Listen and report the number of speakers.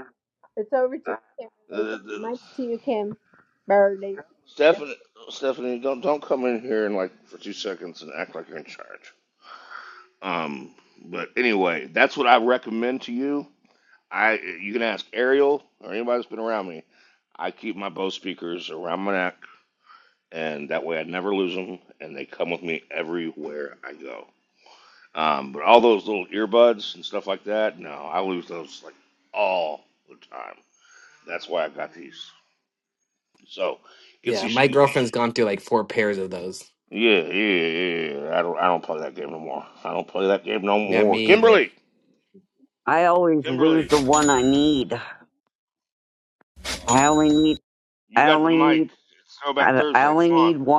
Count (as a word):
four